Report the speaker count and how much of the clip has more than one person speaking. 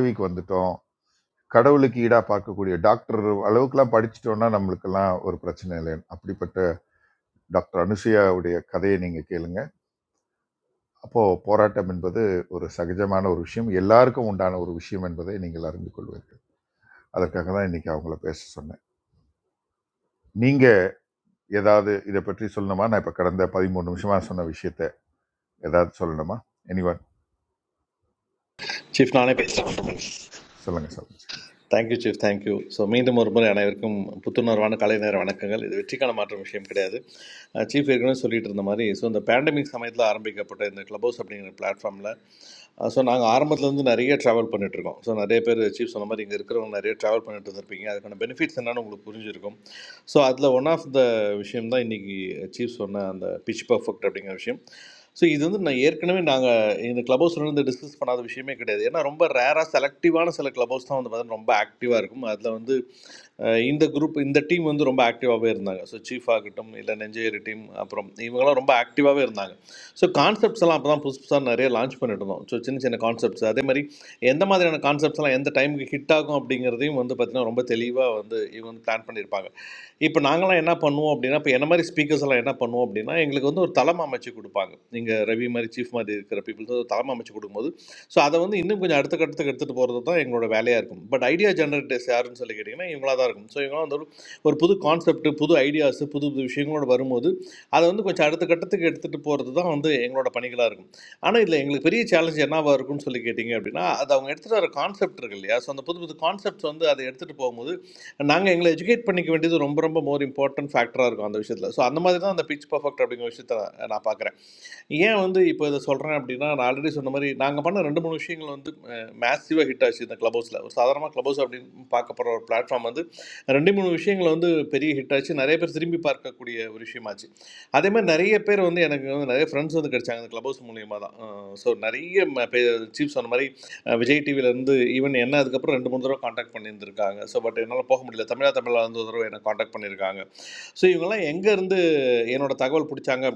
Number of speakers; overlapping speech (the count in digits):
2, no overlap